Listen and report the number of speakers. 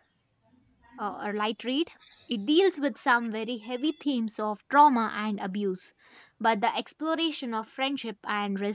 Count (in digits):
1